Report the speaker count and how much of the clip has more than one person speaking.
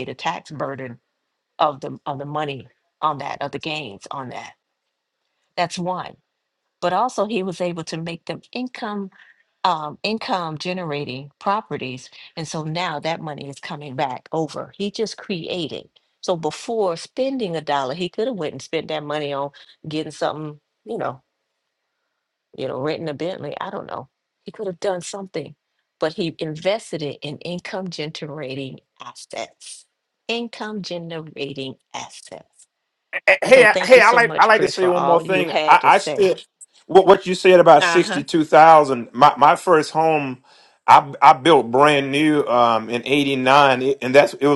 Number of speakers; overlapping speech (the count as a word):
two, about 7%